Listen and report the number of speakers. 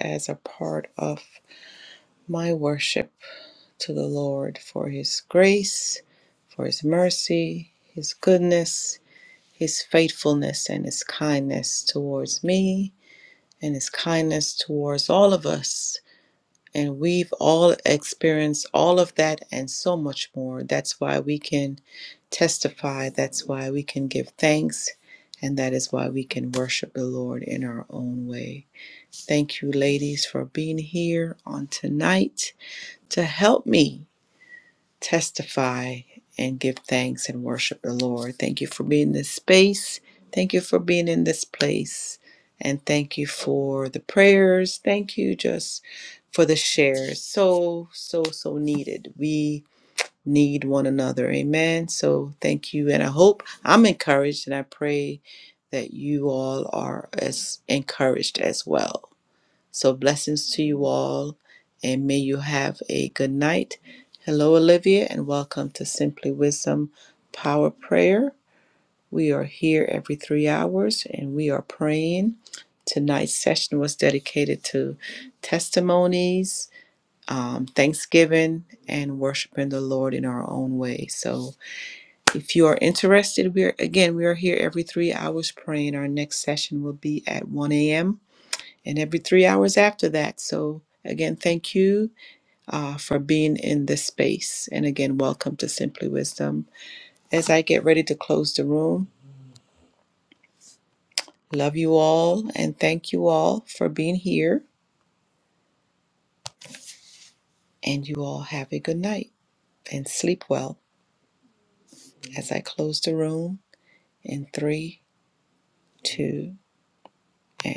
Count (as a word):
one